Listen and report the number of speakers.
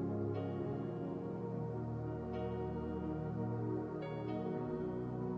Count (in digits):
0